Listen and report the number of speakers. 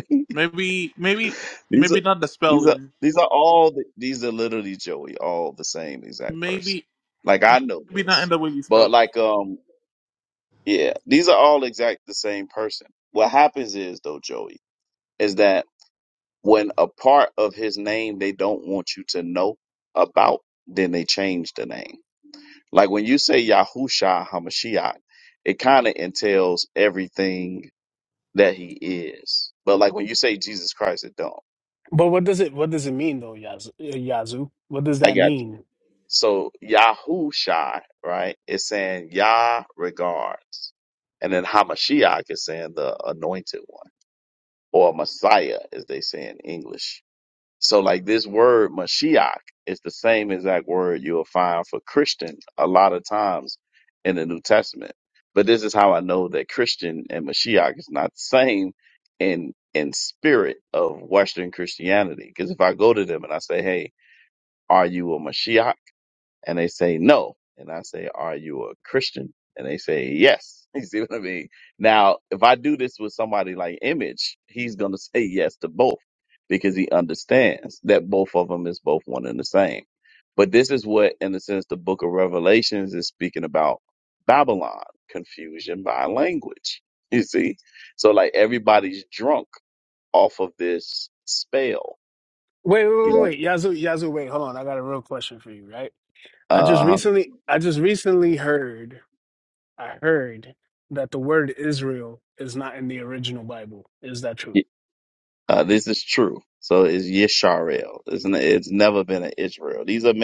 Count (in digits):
3